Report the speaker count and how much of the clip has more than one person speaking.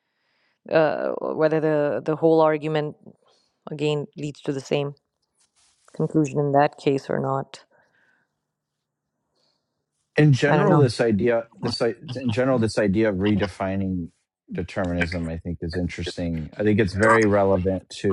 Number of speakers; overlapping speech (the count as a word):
two, about 2%